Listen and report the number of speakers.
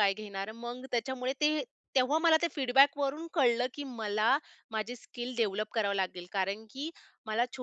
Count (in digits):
1